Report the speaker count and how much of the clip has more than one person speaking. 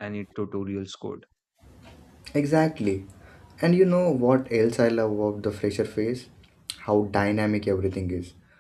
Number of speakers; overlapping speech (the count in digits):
2, no overlap